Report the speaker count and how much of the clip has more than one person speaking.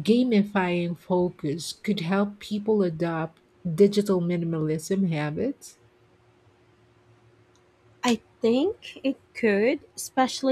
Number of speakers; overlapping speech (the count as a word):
two, no overlap